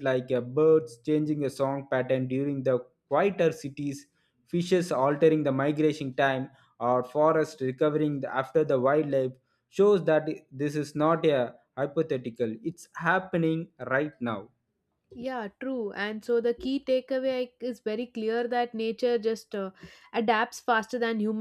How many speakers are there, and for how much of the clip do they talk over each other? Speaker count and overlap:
two, no overlap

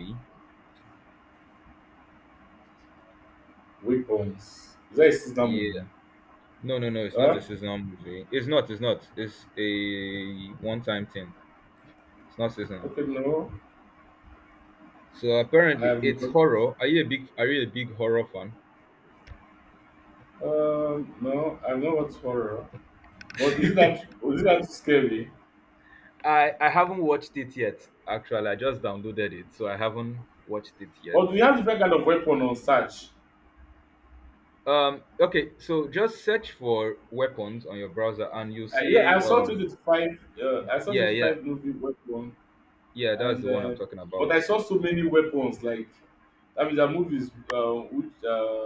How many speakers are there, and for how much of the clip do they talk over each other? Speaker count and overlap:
two, about 7%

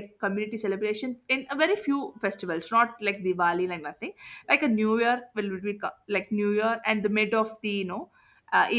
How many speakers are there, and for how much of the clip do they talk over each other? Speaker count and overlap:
one, no overlap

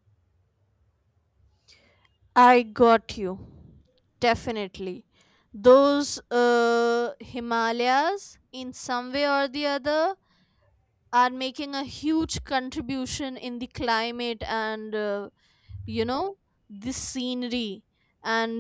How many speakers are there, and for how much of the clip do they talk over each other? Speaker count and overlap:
one, no overlap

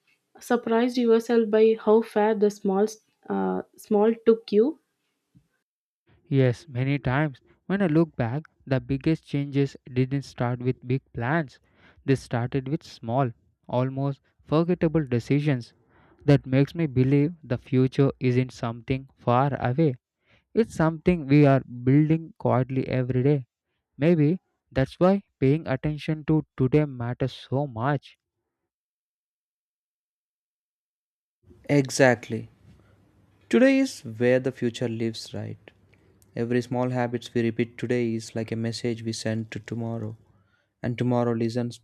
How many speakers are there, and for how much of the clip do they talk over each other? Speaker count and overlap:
three, no overlap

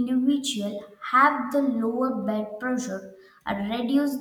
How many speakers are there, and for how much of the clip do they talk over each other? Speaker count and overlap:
one, no overlap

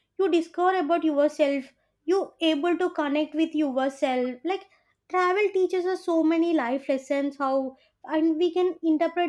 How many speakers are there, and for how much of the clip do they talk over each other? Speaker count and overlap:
one, no overlap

